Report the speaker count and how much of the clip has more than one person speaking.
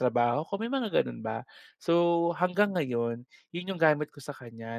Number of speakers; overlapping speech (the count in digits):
1, no overlap